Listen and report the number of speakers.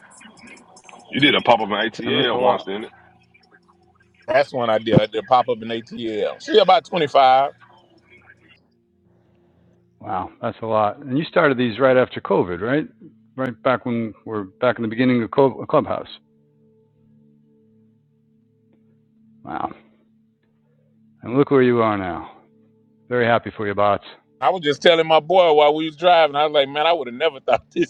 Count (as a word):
three